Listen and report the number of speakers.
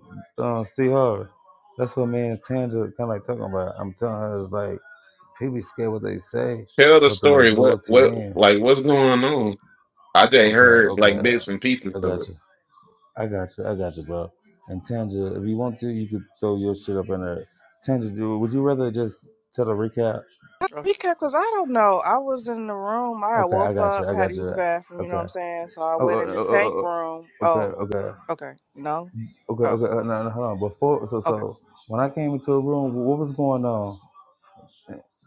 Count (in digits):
3